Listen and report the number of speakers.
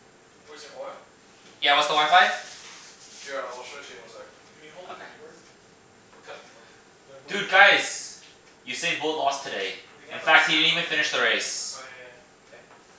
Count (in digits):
4